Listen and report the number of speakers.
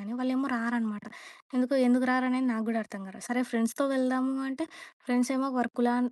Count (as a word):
one